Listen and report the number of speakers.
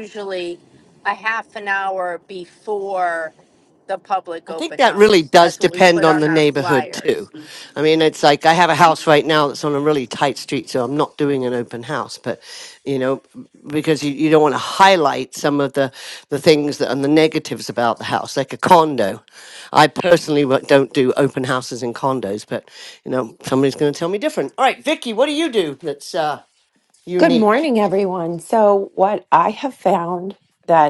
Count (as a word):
three